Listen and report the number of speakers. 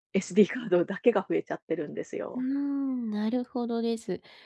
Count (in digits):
2